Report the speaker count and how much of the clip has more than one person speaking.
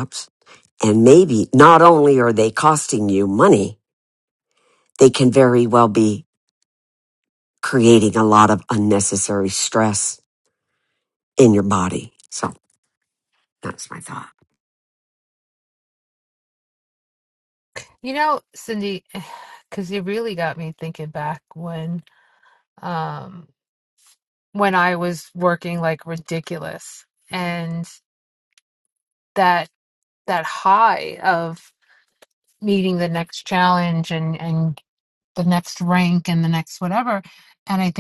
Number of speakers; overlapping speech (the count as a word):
two, no overlap